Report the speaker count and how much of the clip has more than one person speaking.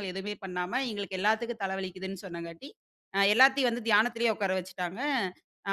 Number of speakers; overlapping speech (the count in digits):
1, no overlap